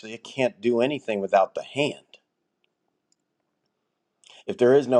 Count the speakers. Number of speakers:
one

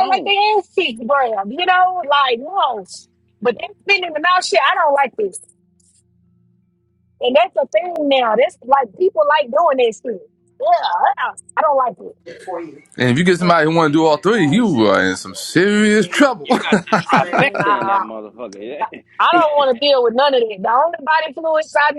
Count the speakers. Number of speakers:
three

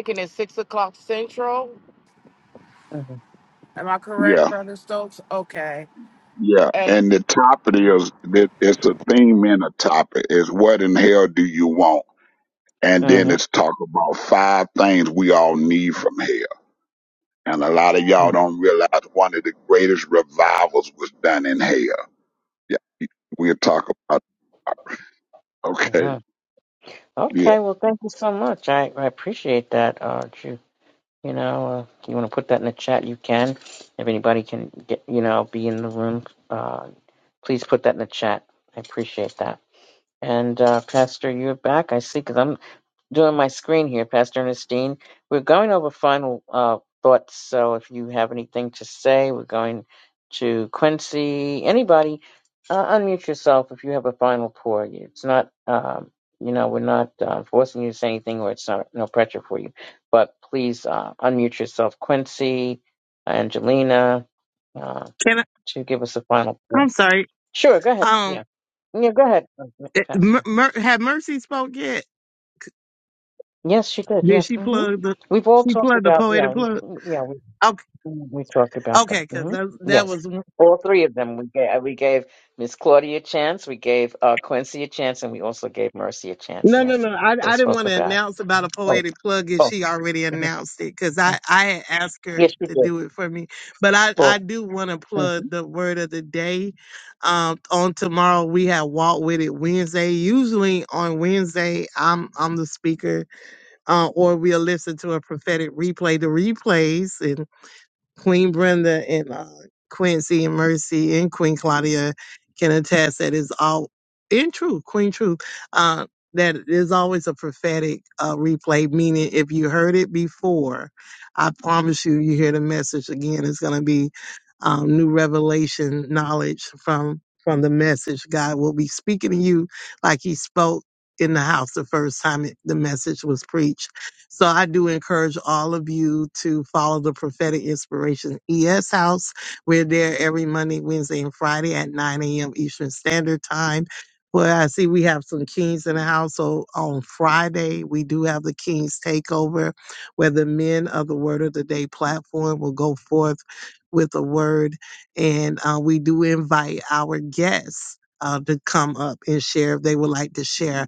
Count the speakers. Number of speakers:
four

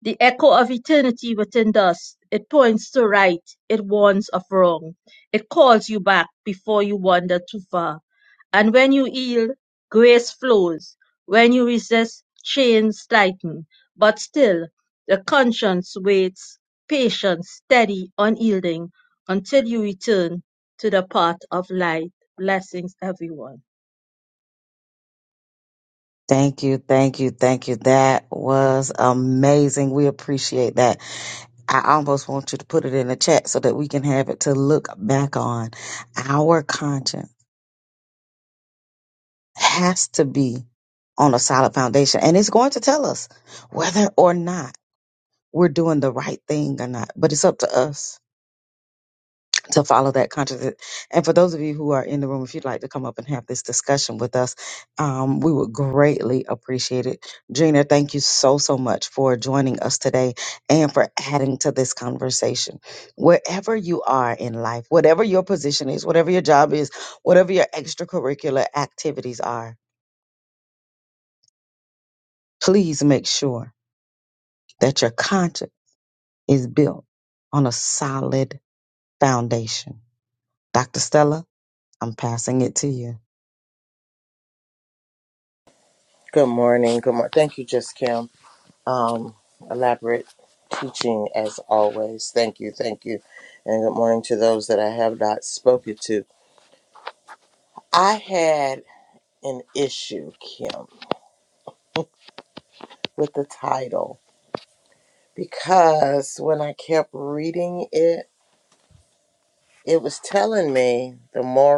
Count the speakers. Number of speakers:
three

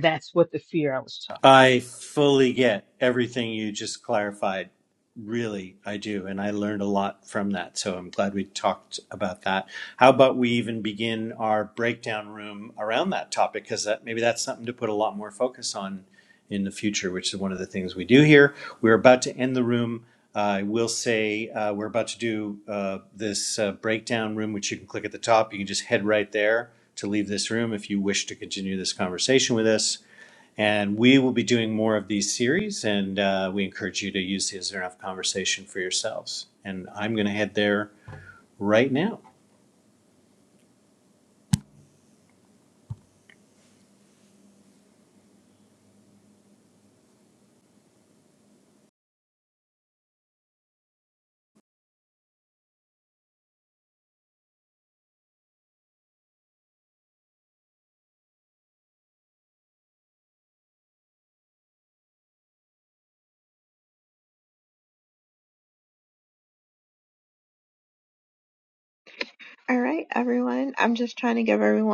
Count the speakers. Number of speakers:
three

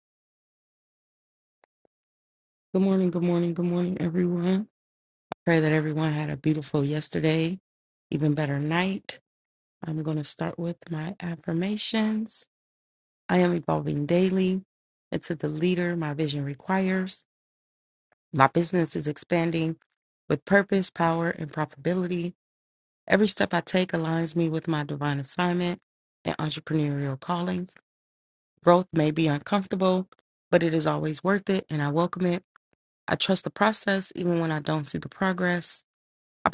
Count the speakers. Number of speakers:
one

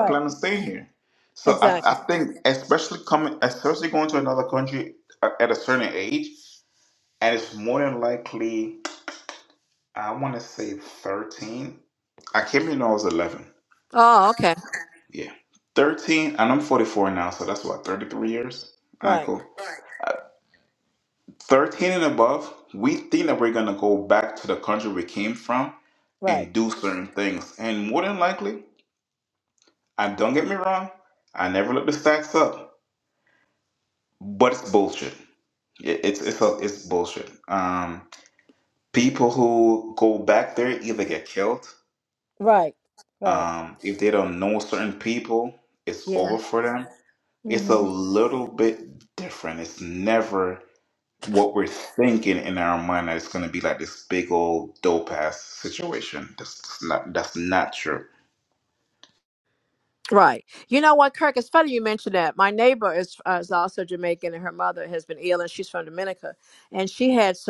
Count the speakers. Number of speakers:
two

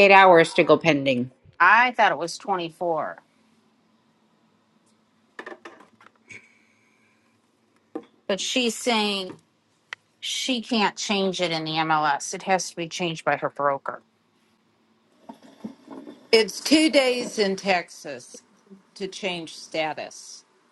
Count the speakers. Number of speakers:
three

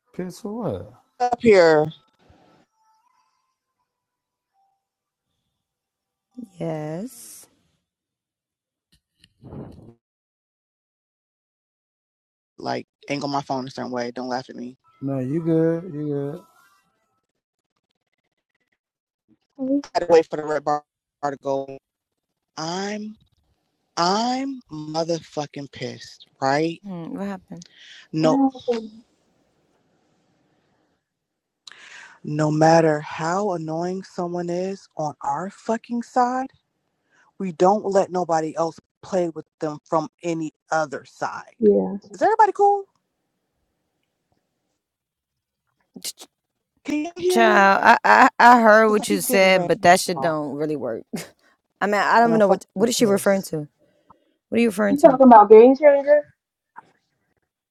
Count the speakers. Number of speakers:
four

